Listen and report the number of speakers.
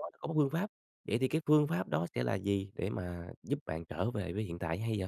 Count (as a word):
one